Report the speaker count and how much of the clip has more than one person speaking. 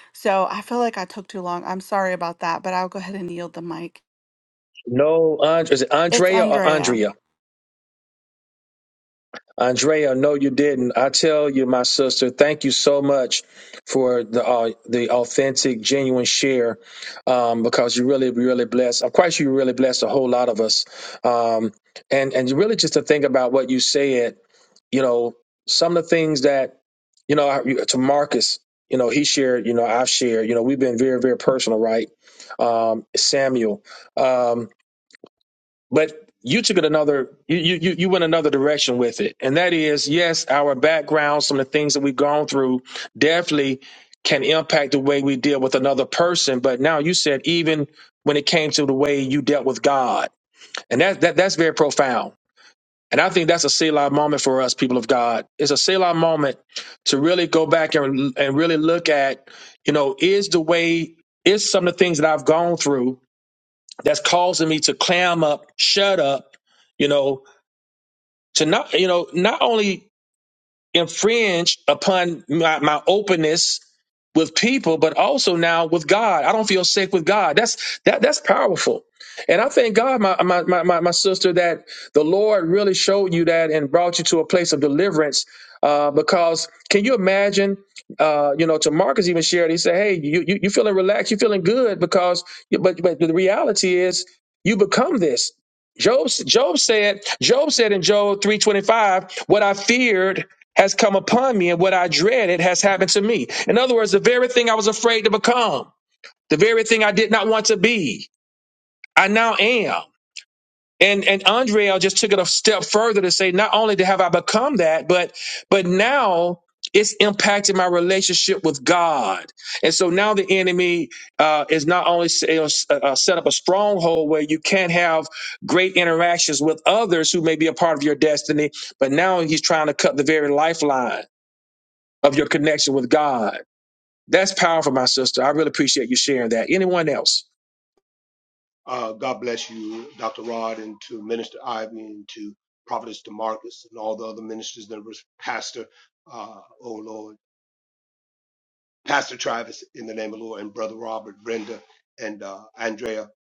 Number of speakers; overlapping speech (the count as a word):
three, about 1%